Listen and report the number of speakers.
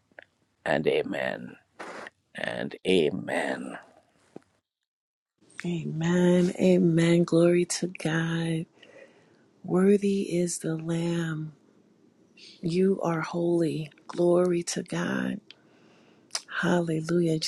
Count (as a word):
two